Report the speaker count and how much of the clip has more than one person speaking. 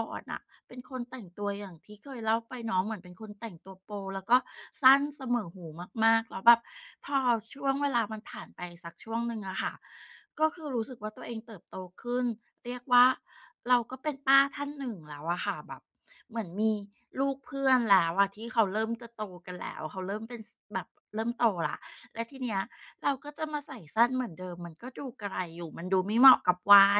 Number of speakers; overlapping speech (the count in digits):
1, no overlap